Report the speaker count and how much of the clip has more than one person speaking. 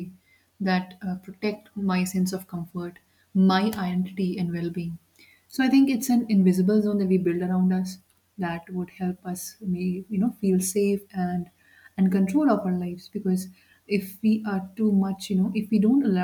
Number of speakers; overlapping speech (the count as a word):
one, no overlap